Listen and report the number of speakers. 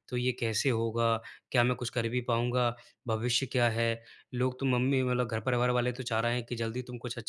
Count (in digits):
1